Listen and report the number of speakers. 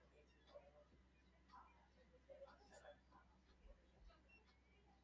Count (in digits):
0